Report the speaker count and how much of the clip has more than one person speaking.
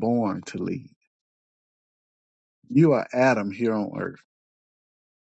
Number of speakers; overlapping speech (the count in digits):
1, no overlap